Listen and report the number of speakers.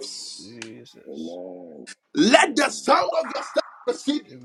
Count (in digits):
3